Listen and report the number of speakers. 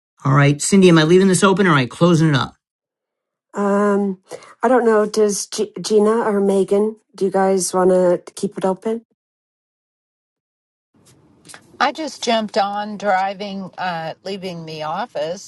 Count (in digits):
3